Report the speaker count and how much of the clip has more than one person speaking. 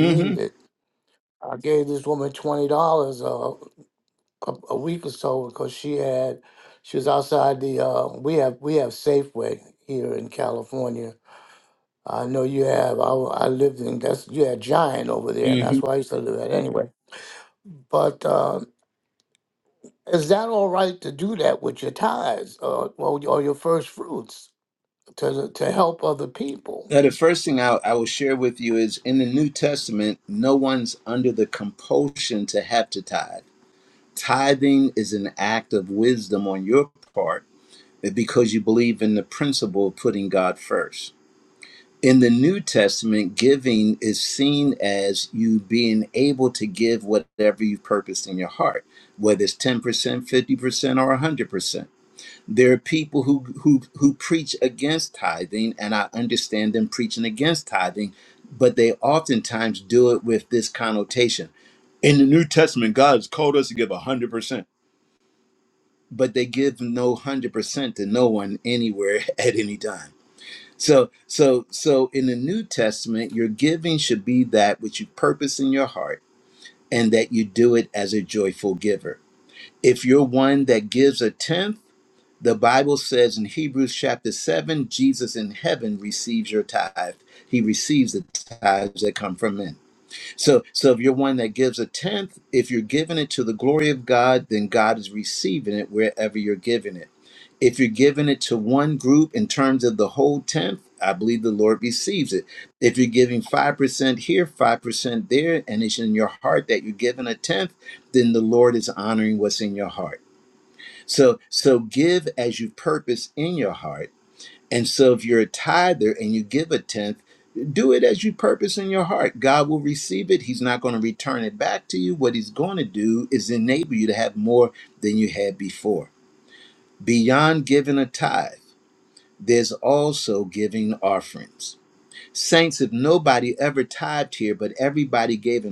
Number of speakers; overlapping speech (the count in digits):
2, about 1%